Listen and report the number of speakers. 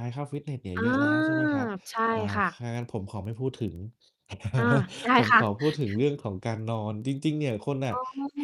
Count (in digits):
2